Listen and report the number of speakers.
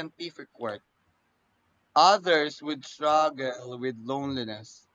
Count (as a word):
one